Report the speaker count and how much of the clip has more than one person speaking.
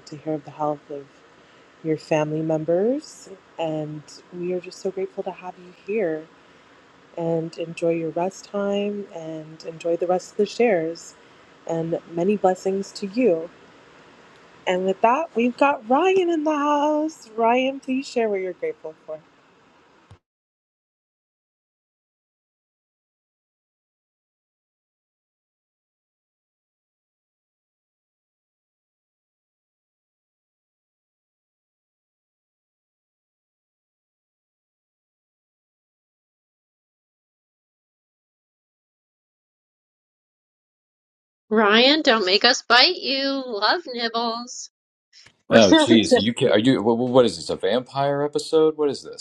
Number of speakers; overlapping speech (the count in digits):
3, about 2%